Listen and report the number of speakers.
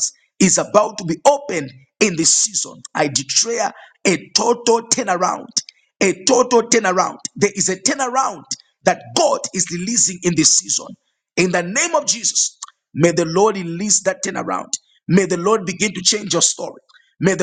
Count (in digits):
1